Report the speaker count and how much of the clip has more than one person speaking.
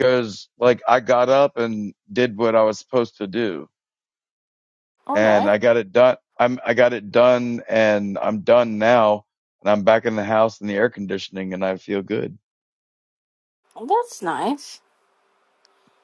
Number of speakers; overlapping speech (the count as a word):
two, about 2%